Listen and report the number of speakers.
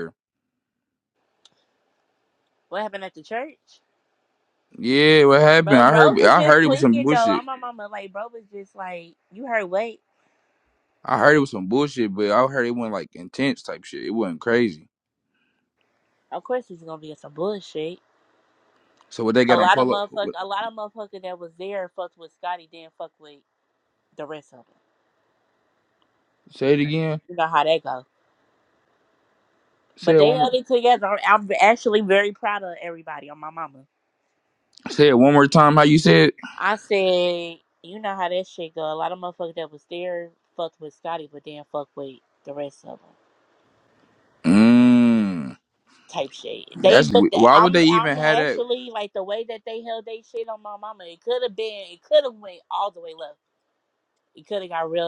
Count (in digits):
2